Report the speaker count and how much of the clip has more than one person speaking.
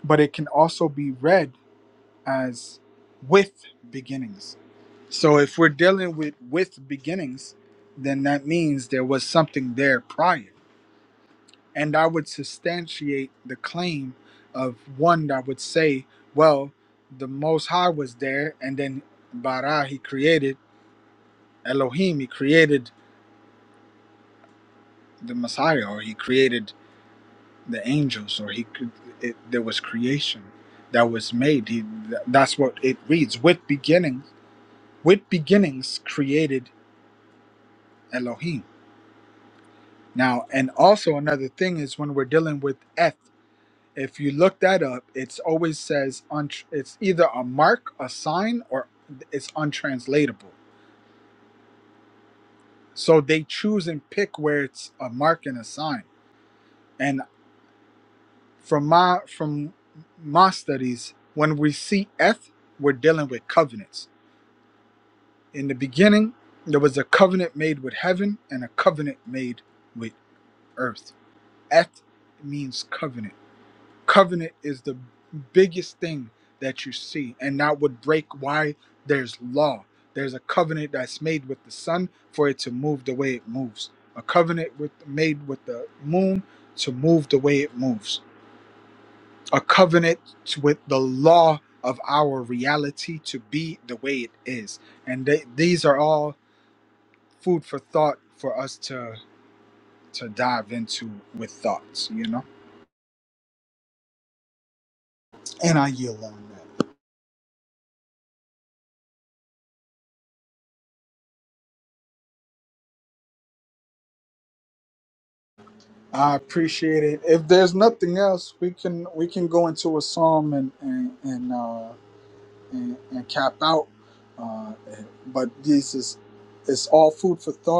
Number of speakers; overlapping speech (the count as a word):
one, no overlap